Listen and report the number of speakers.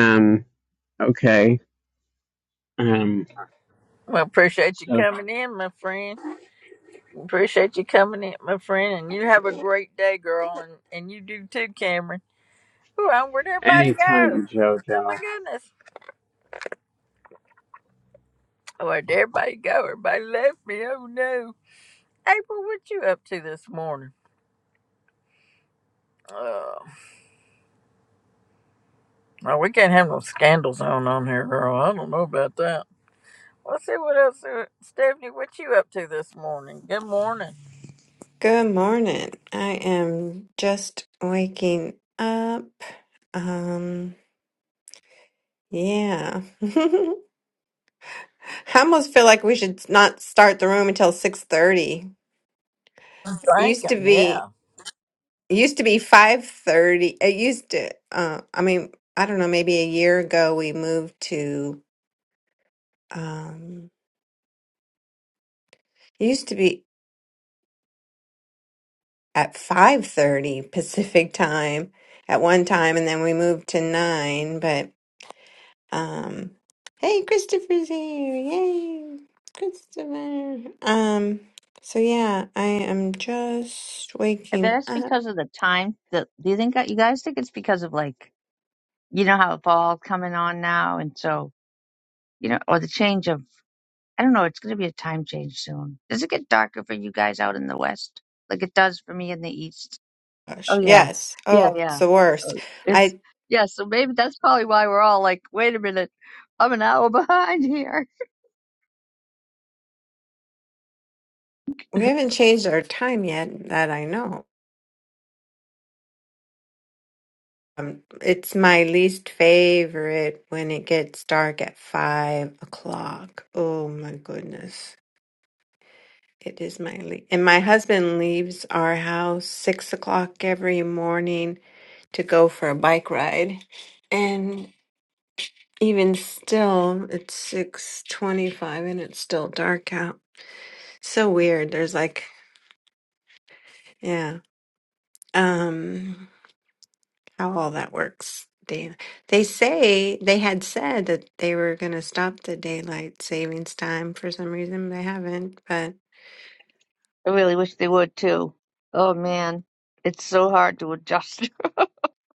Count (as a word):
four